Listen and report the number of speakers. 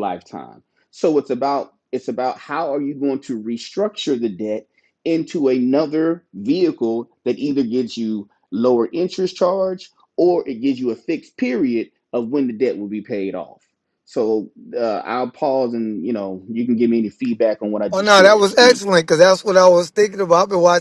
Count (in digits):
2